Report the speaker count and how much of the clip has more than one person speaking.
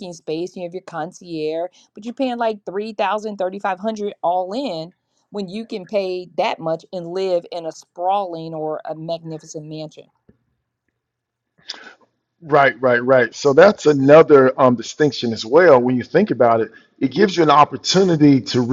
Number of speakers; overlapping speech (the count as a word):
two, no overlap